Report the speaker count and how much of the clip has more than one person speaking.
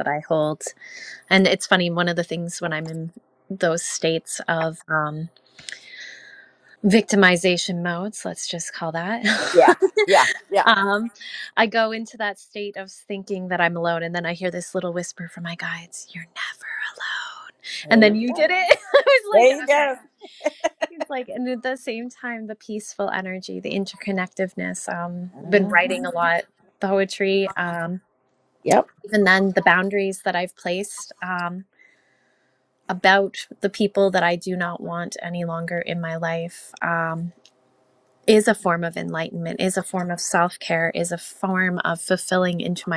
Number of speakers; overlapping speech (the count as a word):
two, about 5%